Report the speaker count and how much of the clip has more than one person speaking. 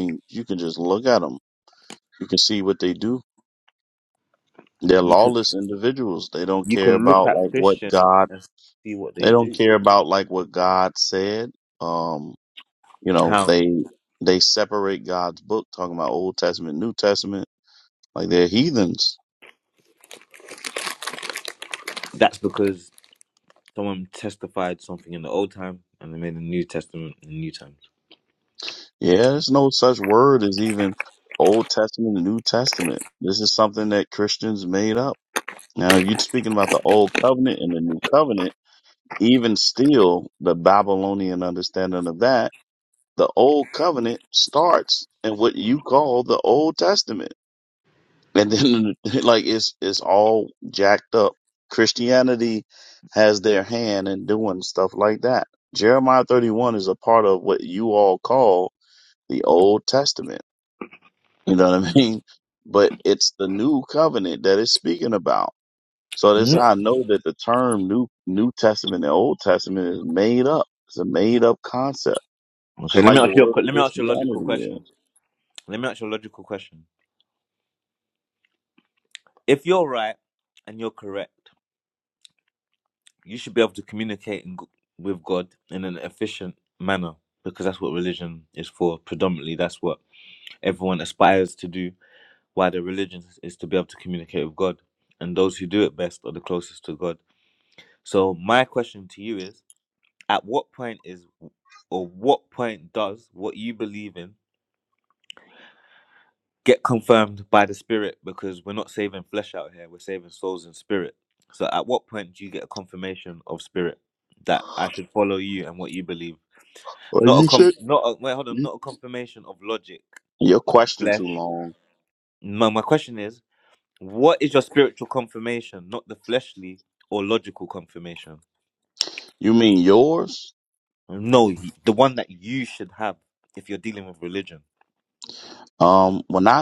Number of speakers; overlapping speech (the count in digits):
2, about 4%